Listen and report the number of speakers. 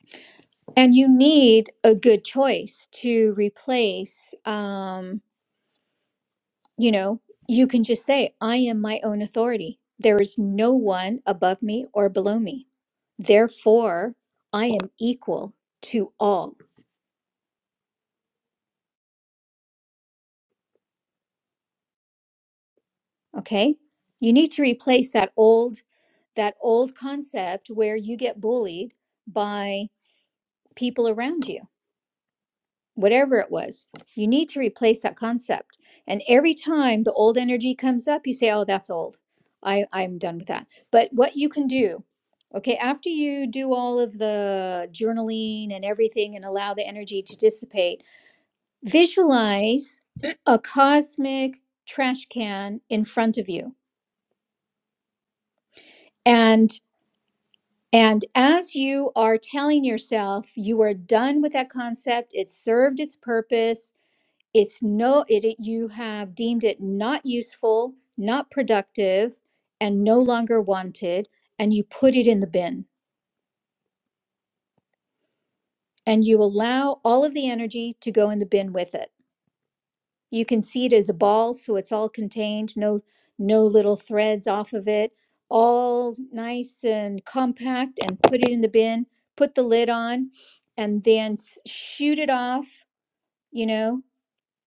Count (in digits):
1